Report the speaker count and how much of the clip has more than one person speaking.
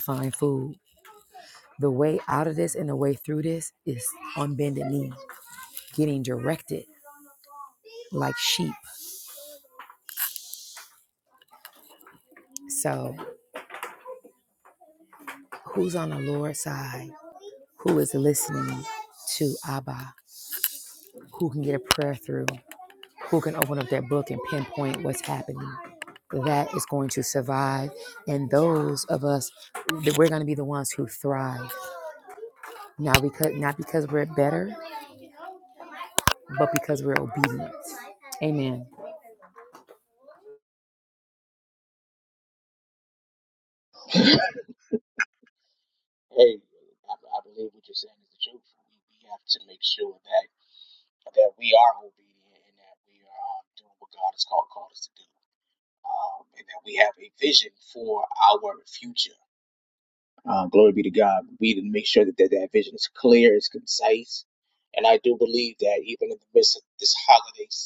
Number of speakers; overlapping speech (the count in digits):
2, no overlap